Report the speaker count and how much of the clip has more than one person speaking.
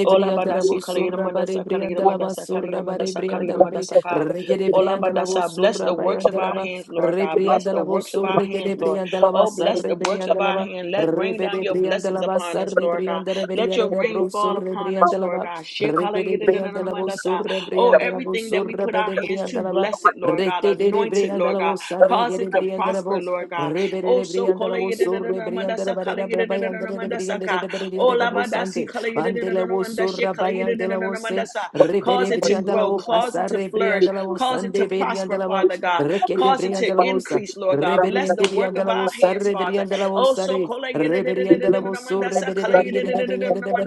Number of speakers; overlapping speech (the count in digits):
2, about 90%